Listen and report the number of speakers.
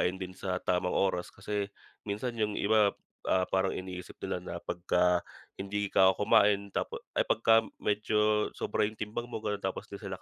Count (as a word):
one